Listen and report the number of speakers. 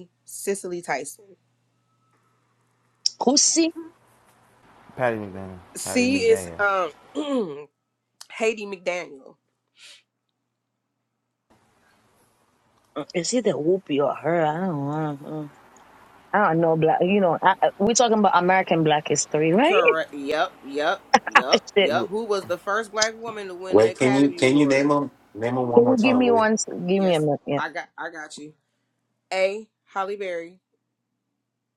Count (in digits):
4